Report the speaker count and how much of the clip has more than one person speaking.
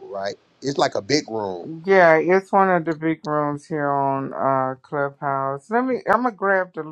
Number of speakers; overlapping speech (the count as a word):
two, no overlap